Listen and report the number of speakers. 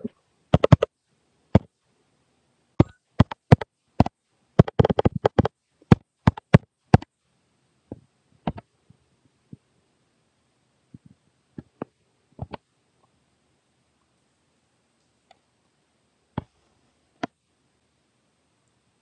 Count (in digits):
0